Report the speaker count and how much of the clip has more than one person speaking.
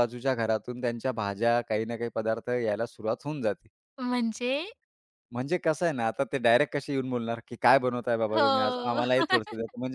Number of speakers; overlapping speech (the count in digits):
2, about 8%